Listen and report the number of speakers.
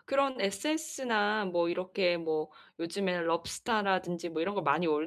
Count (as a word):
one